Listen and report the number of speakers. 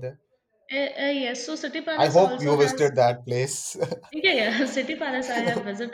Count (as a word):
two